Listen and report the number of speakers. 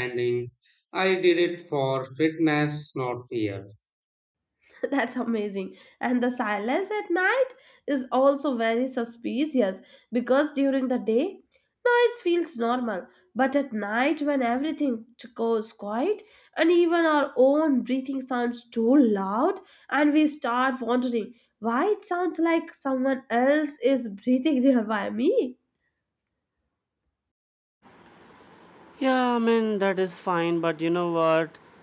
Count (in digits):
3